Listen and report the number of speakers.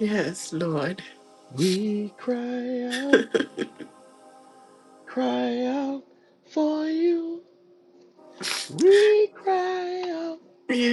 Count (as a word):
two